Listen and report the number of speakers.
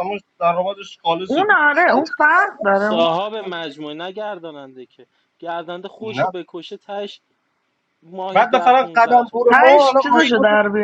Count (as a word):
three